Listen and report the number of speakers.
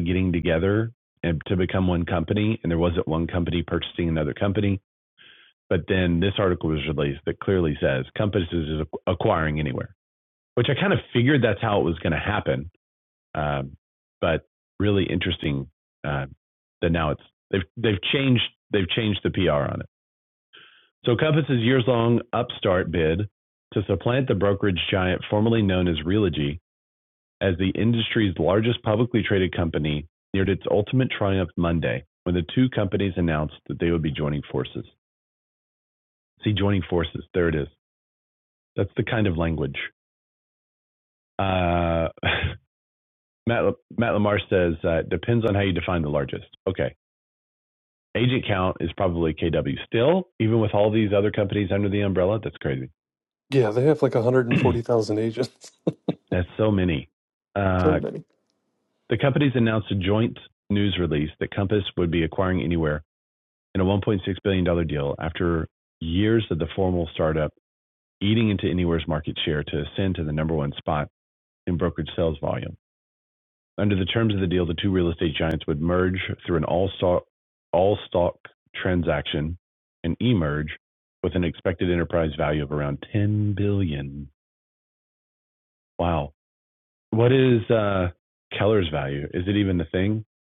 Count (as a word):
two